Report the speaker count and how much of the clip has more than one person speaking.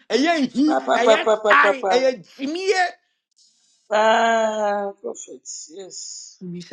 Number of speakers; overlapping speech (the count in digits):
2, about 20%